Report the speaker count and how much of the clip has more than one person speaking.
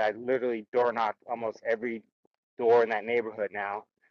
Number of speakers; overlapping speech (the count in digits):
1, no overlap